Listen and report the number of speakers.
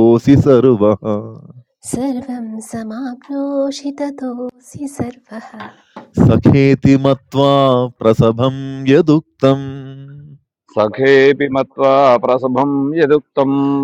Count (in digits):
3